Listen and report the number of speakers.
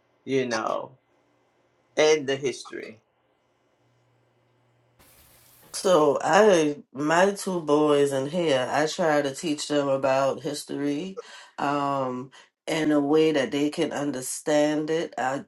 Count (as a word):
two